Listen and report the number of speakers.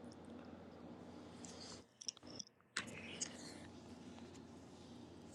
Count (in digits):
0